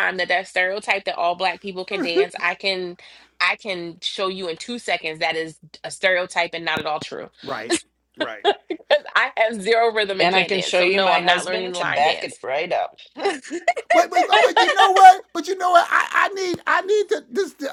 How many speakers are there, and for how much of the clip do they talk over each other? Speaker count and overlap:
three, about 12%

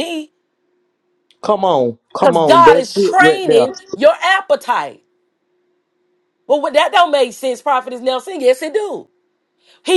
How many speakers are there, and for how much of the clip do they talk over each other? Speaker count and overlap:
two, about 15%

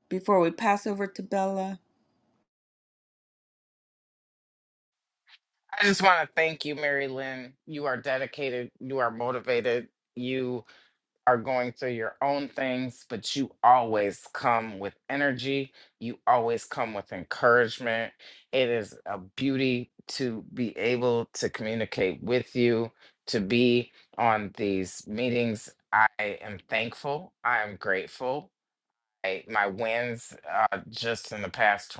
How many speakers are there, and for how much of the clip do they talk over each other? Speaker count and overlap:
two, no overlap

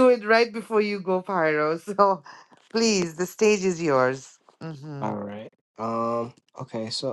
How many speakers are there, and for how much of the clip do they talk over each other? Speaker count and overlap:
two, about 1%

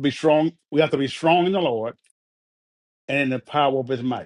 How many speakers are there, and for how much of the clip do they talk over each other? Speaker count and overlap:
one, no overlap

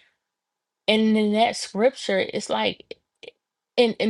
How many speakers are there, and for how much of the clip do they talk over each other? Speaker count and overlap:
one, no overlap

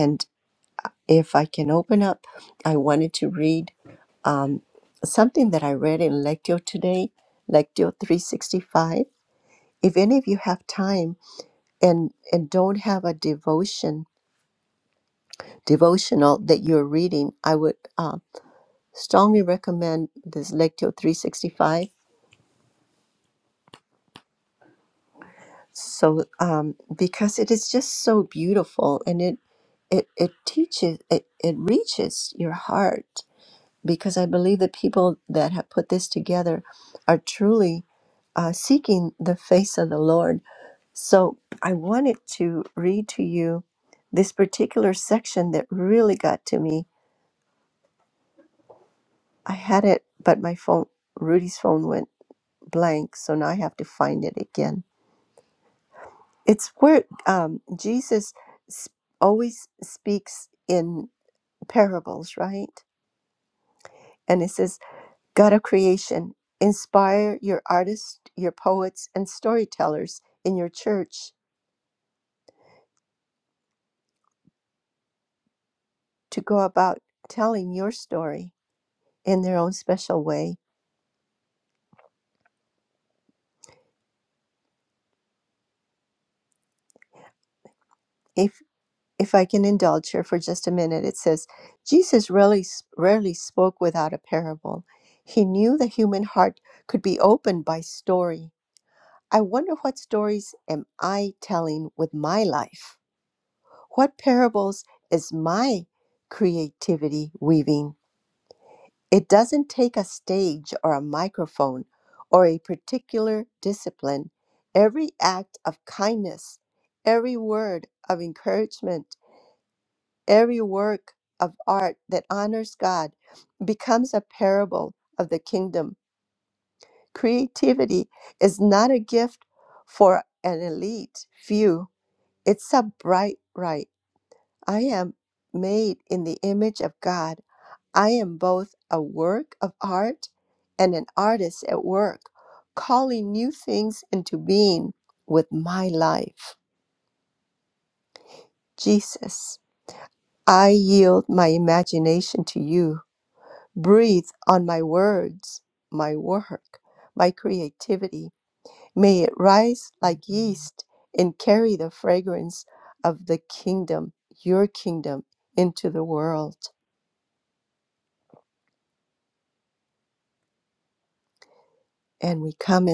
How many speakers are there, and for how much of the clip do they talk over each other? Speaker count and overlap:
one, no overlap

